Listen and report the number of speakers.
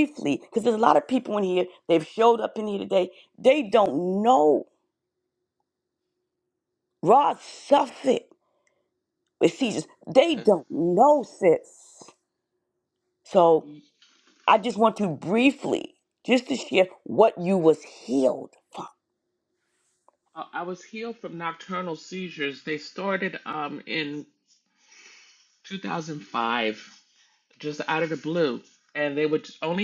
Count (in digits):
2